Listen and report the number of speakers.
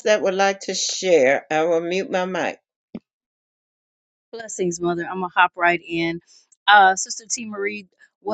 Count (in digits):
2